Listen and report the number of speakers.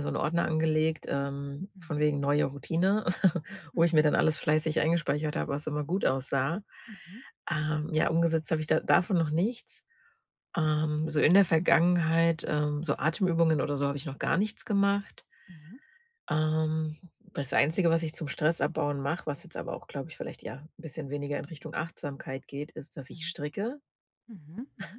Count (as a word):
two